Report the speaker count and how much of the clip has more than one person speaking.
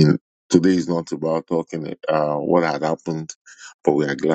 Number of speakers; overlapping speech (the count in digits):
1, no overlap